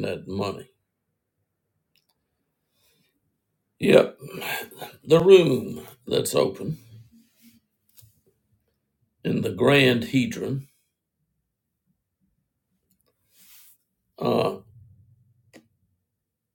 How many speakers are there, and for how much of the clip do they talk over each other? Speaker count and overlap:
1, no overlap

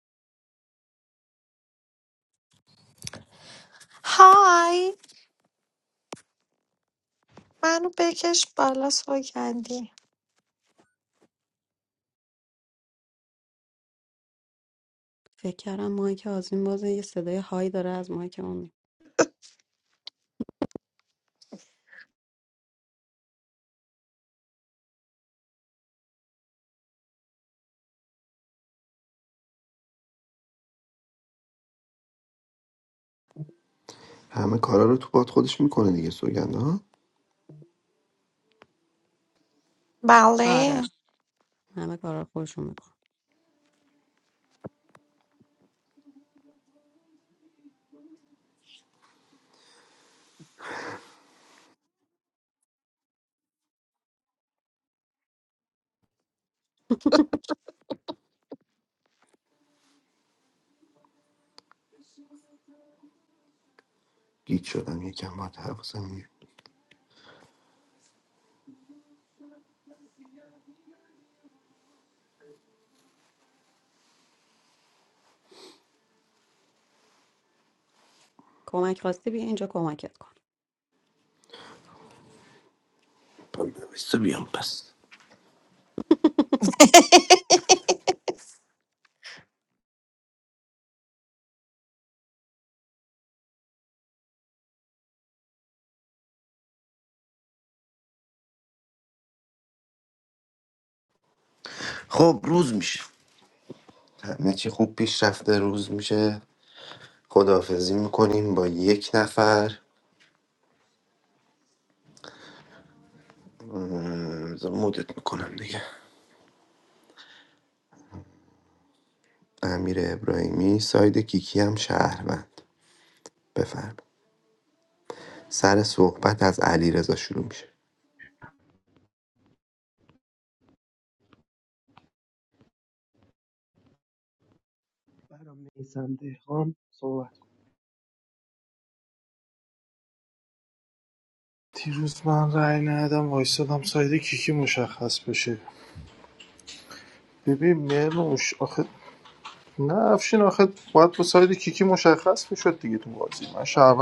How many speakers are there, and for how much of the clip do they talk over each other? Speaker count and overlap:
5, under 1%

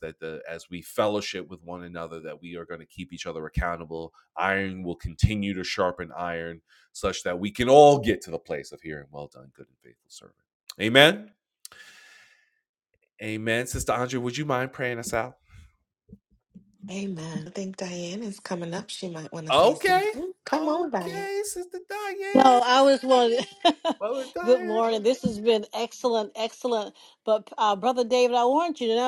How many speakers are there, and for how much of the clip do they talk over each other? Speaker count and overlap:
3, about 7%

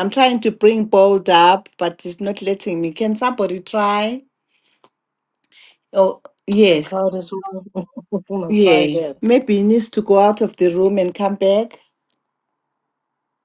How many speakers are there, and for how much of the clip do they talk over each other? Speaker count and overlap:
2, about 6%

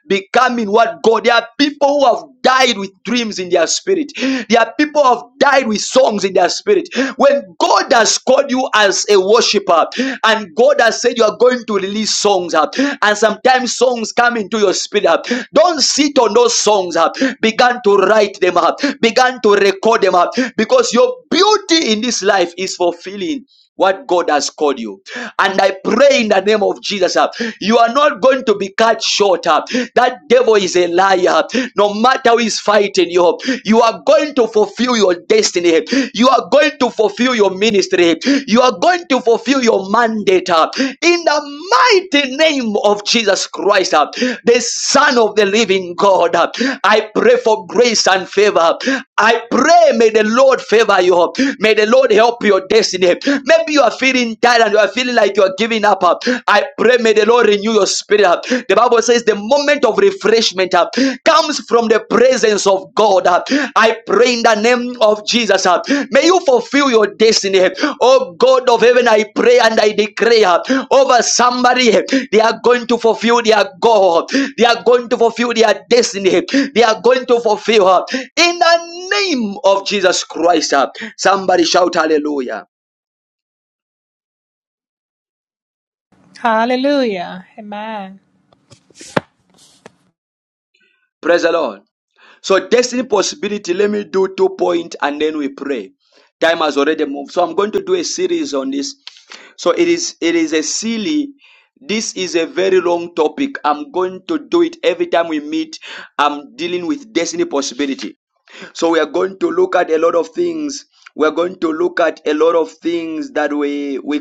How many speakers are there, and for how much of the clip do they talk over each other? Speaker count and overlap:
2, no overlap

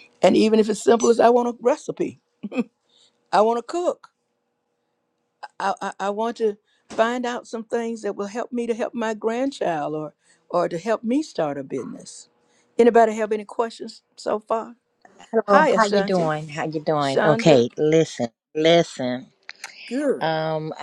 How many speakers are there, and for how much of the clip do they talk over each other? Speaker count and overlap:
2, about 7%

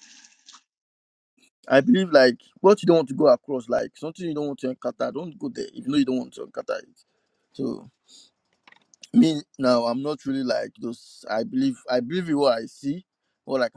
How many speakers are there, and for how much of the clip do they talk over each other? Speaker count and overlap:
1, no overlap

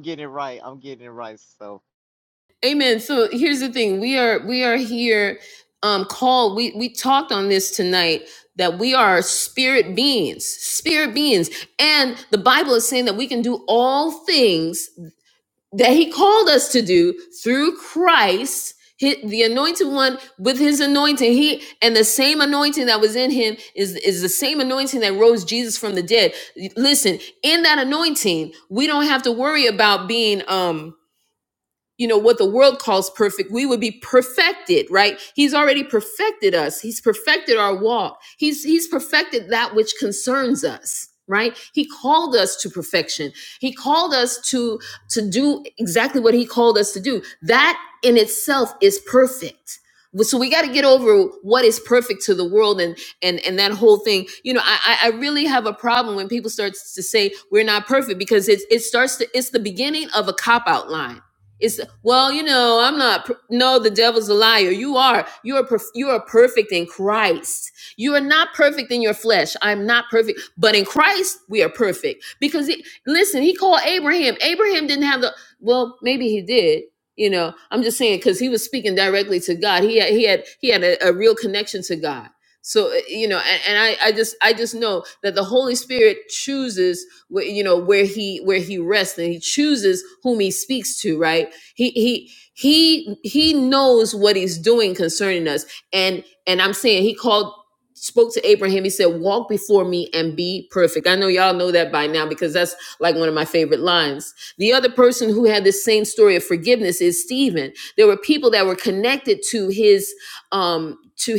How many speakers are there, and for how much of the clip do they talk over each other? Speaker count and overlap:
2, no overlap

